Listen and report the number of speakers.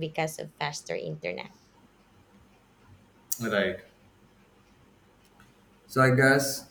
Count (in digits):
2